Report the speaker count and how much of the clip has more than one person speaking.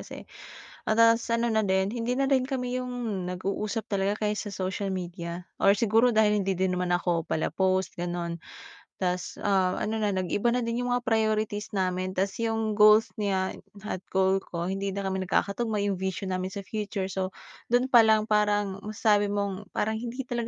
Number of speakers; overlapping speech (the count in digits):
1, no overlap